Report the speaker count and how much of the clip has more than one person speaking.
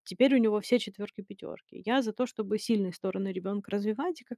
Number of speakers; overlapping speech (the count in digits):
1, no overlap